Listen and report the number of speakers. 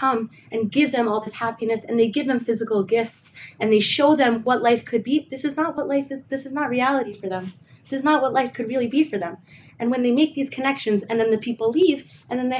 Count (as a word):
one